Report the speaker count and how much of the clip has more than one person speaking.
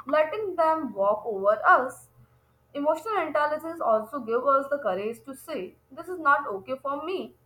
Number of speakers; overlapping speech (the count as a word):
one, no overlap